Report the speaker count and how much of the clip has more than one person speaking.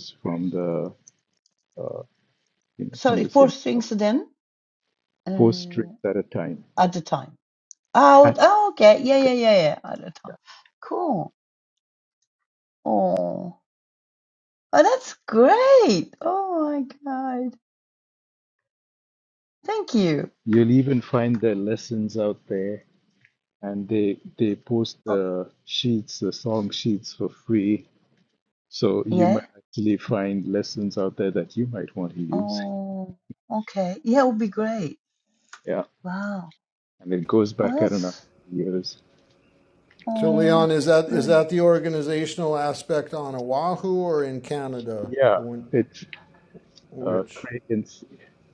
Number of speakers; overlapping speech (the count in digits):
3, about 10%